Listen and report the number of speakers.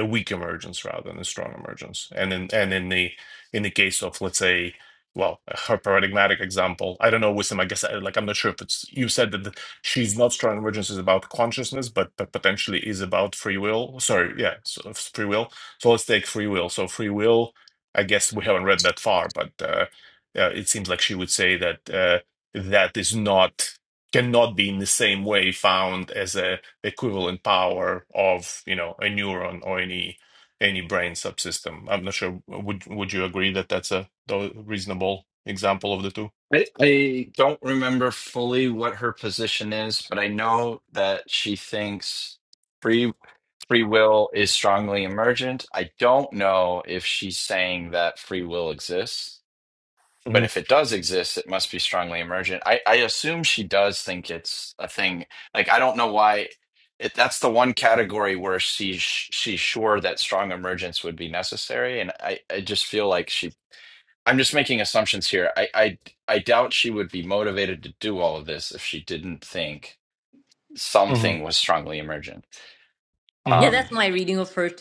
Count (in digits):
3